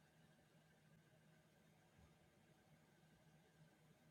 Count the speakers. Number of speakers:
zero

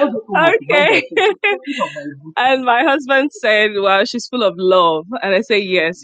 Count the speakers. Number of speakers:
two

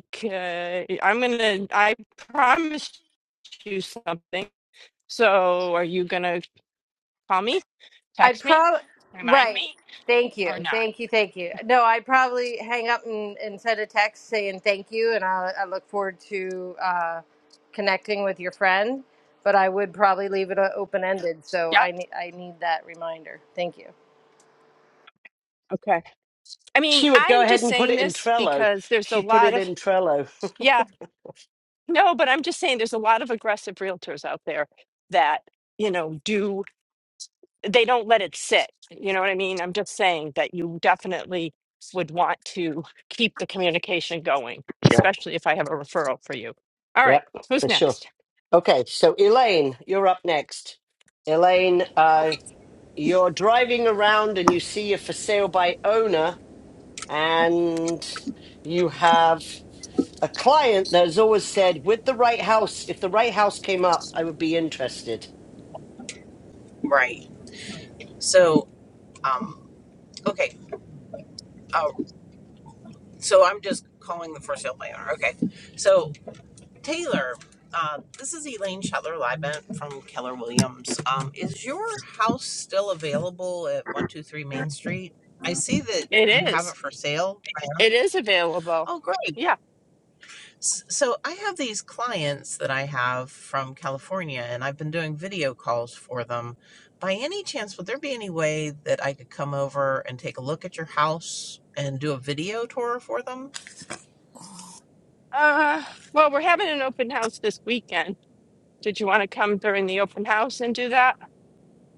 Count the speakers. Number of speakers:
four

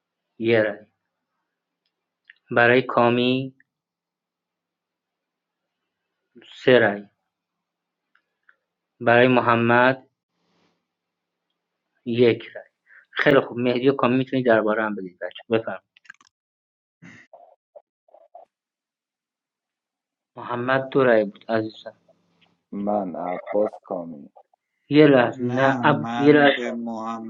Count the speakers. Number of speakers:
three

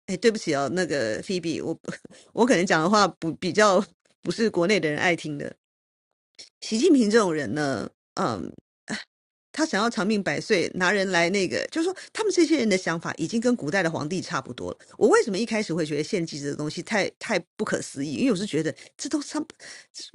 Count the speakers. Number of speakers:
one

